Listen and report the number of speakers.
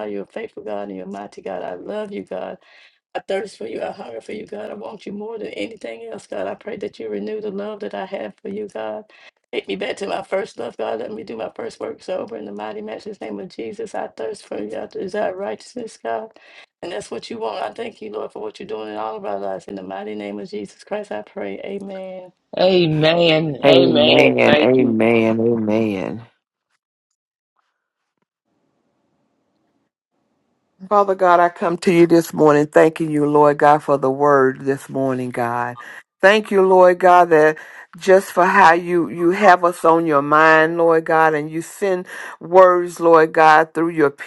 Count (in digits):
3